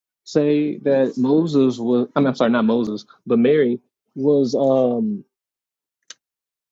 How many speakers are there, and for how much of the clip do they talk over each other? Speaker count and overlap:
one, no overlap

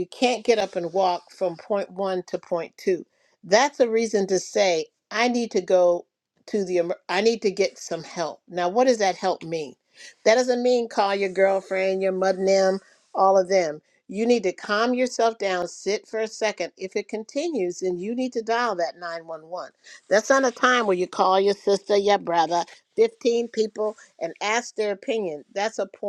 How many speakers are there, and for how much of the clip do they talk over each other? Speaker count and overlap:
one, no overlap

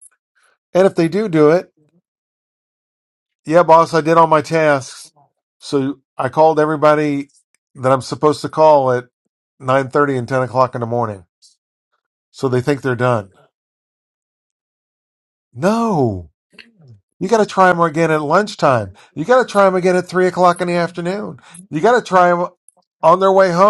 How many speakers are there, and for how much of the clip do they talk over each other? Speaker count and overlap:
one, no overlap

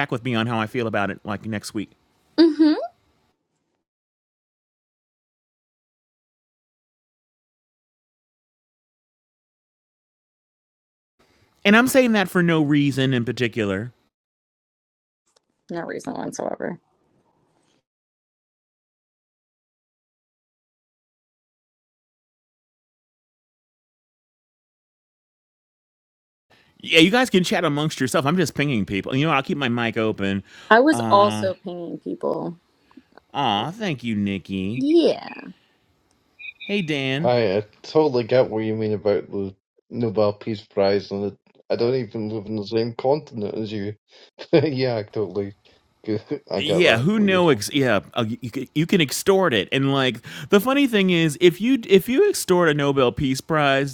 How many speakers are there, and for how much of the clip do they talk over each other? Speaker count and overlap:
three, about 4%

